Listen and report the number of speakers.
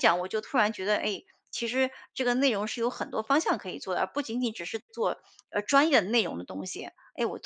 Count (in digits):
1